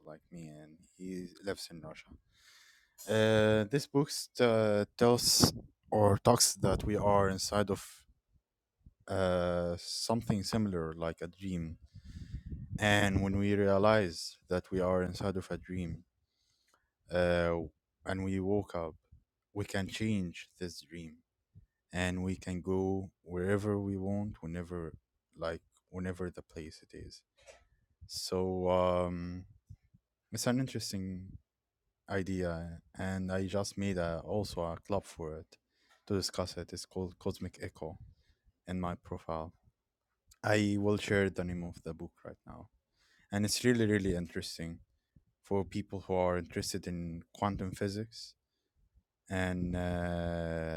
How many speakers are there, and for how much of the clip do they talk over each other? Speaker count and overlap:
1, no overlap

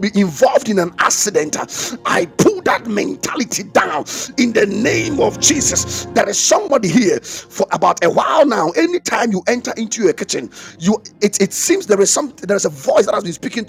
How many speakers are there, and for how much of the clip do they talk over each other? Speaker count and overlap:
1, no overlap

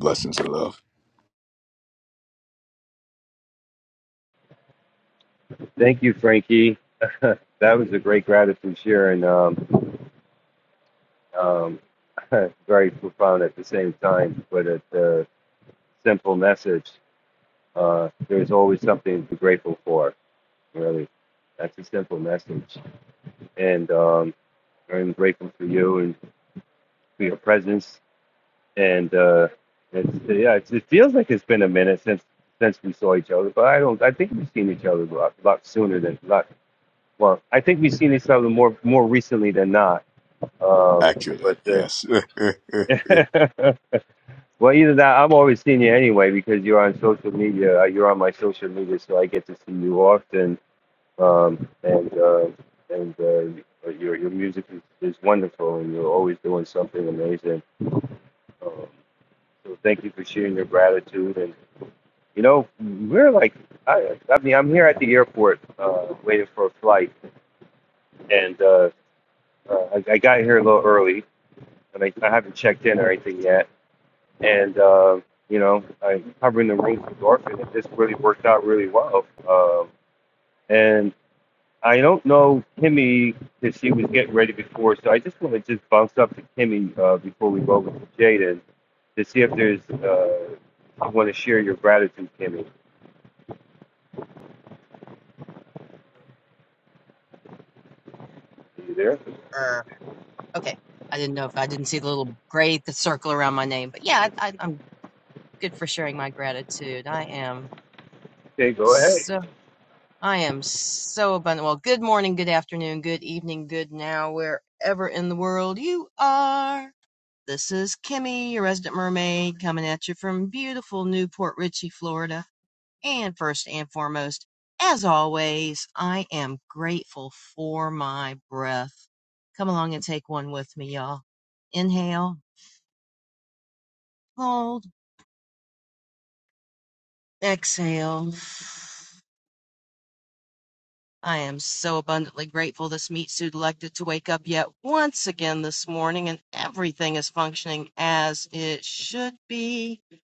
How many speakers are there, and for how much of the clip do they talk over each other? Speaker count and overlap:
3, under 1%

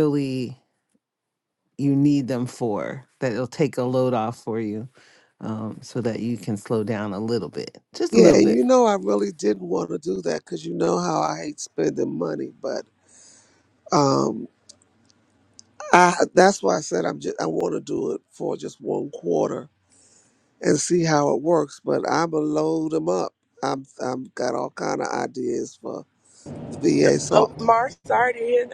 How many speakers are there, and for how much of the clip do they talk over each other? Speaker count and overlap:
3, about 3%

